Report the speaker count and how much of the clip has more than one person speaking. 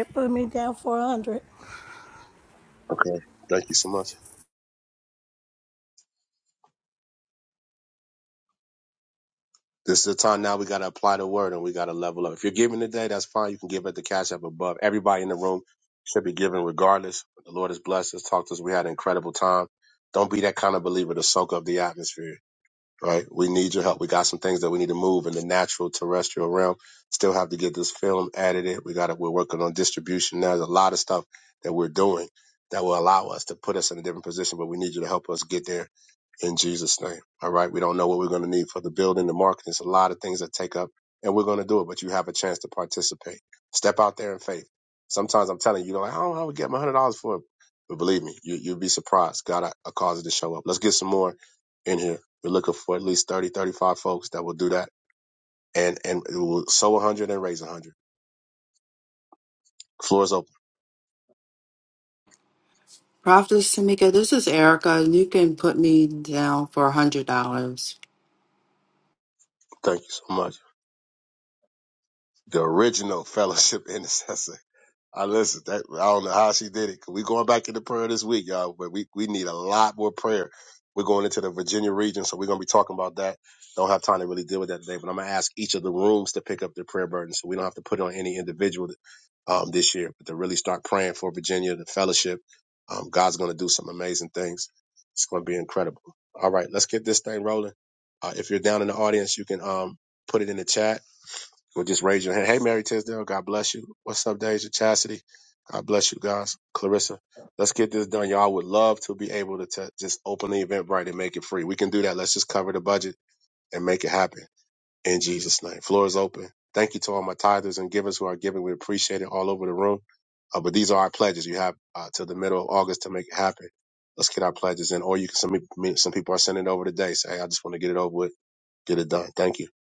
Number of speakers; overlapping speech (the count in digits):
3, no overlap